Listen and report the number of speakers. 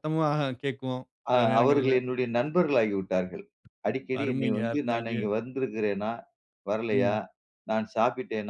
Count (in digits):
2